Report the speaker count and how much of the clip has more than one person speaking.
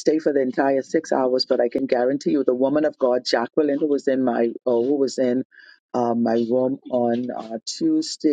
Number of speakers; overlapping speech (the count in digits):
1, no overlap